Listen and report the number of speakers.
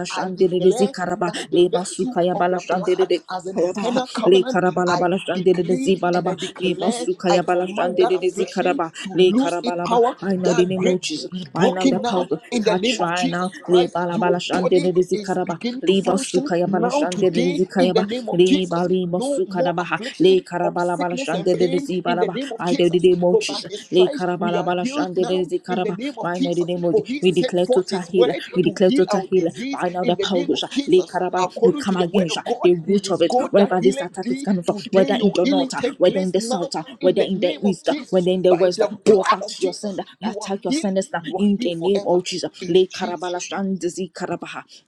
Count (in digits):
2